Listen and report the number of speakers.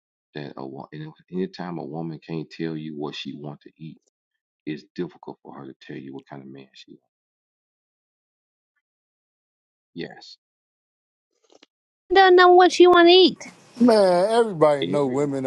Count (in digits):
3